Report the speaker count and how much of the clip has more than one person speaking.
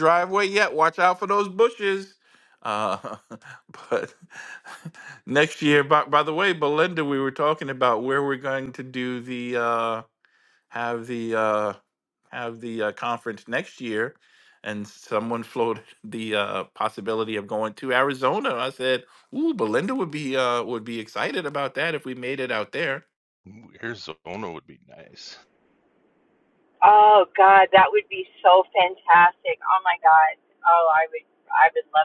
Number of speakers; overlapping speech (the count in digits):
3, no overlap